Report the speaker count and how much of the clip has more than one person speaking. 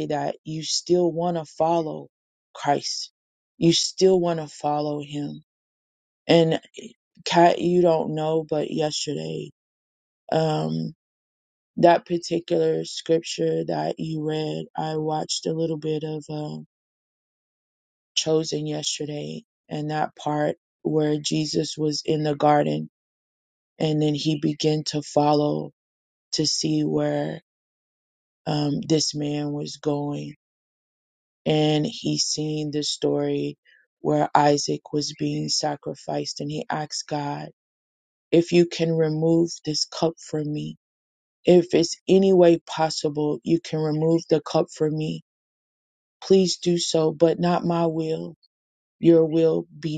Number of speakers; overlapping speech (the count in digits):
1, no overlap